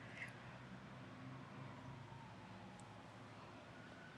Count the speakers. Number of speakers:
0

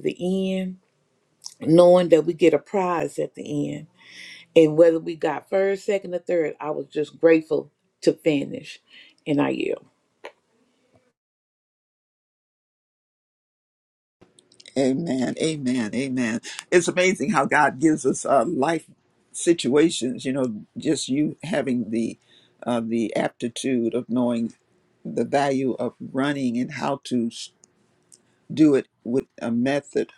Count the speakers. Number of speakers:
2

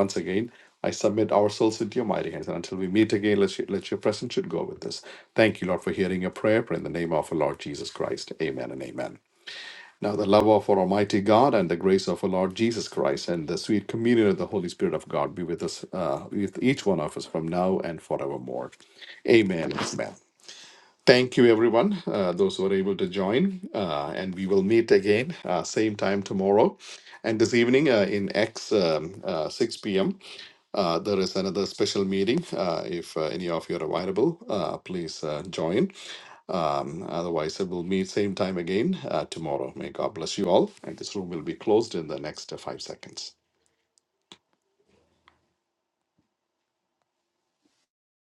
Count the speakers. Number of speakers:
1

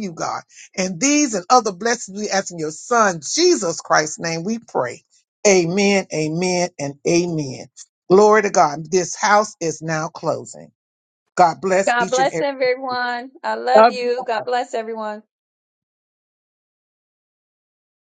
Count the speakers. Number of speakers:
2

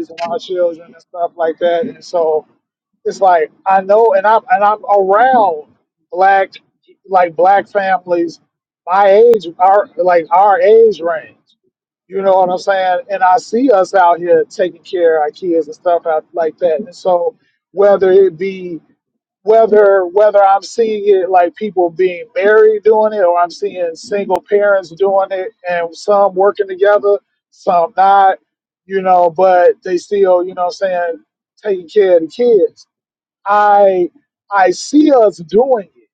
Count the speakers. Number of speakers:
1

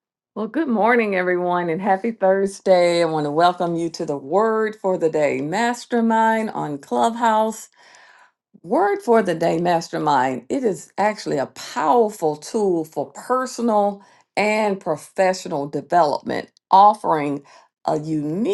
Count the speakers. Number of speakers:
1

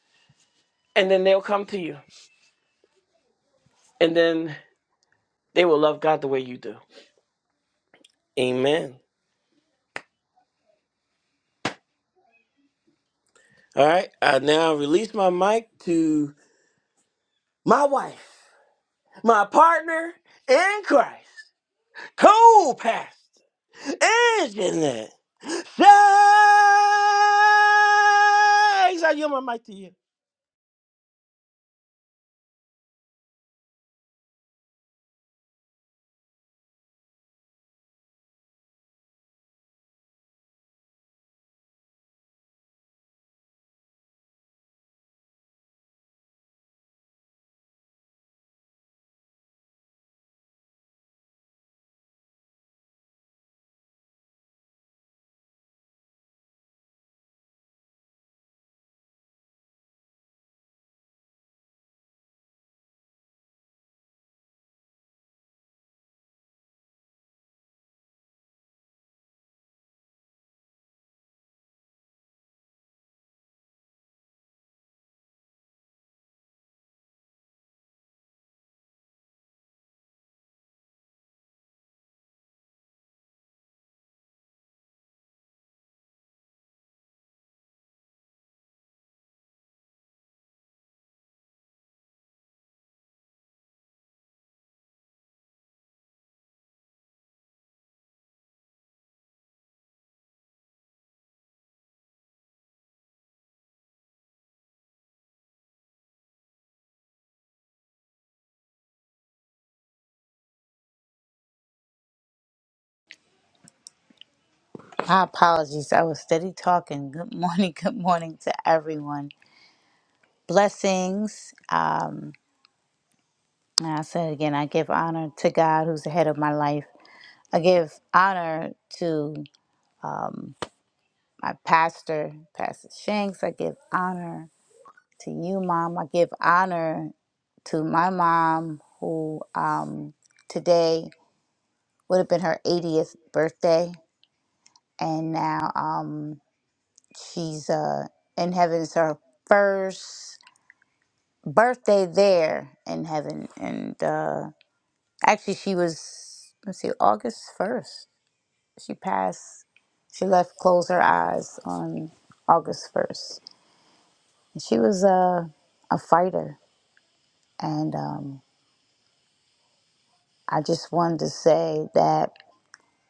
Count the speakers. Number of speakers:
2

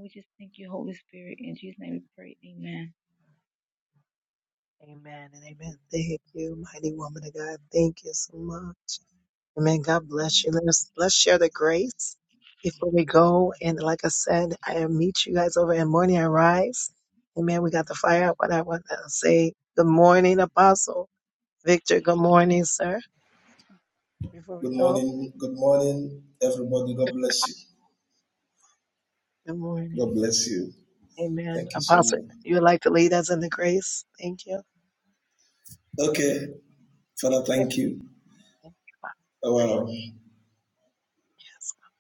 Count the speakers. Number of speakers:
3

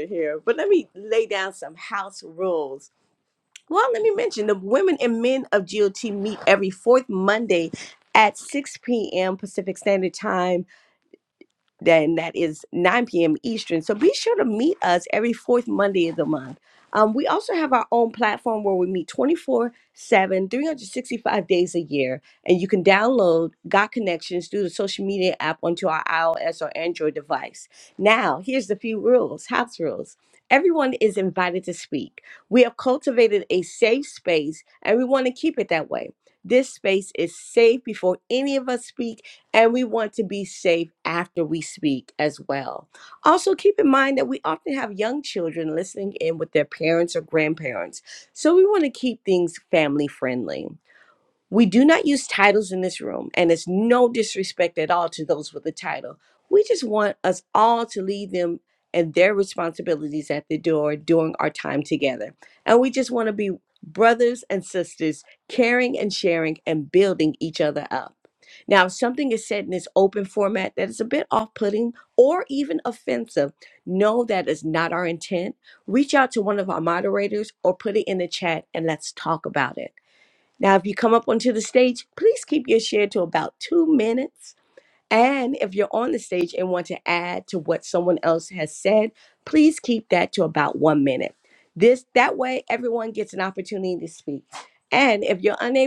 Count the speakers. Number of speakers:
1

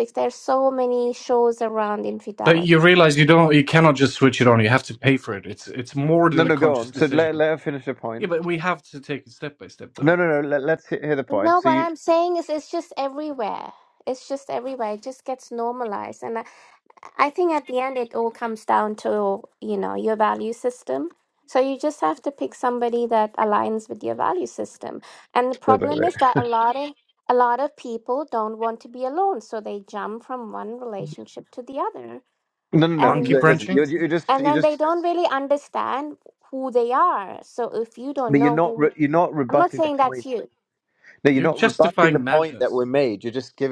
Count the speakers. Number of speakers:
3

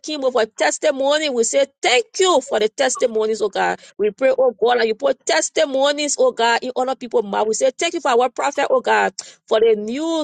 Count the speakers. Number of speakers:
1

